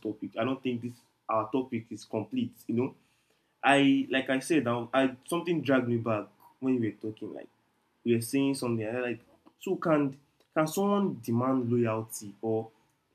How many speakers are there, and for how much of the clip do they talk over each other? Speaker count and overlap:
one, no overlap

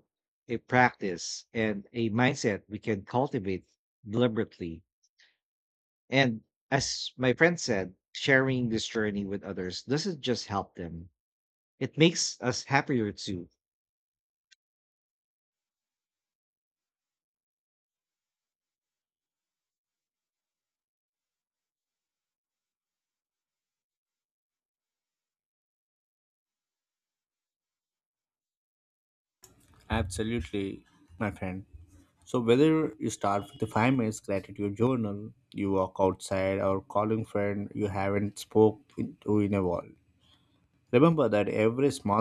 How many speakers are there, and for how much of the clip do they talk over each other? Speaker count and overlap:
two, no overlap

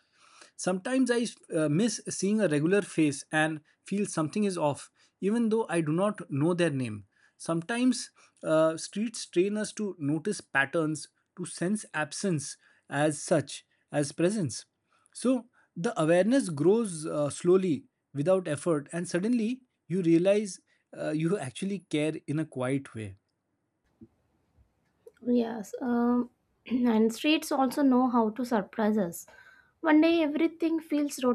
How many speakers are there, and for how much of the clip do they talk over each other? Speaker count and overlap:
two, no overlap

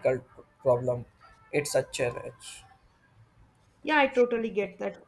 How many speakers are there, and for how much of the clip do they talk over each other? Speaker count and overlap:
two, no overlap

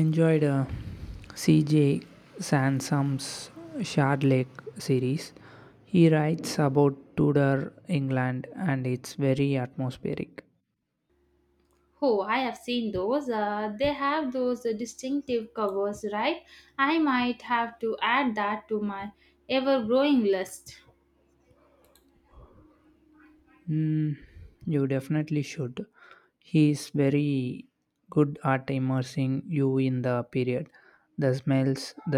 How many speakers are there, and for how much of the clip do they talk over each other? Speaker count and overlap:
two, no overlap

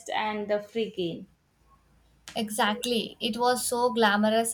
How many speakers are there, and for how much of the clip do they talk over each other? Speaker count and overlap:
two, no overlap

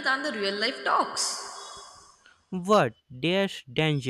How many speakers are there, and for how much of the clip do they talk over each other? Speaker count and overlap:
two, no overlap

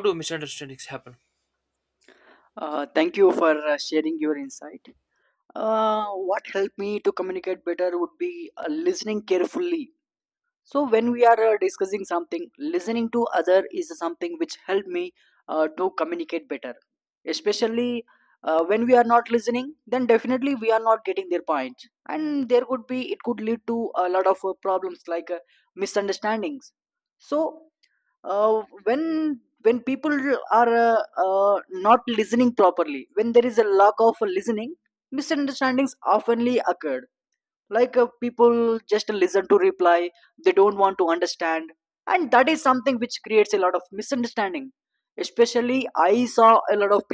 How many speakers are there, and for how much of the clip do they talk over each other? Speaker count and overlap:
two, no overlap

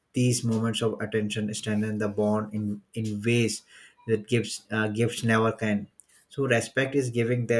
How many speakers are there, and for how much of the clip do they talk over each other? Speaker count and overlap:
one, no overlap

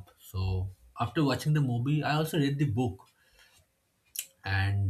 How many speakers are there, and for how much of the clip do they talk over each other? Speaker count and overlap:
one, no overlap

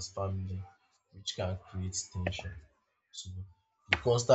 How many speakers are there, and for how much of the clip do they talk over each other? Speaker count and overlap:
one, no overlap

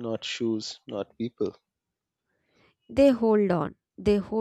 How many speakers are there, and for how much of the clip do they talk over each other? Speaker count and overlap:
two, no overlap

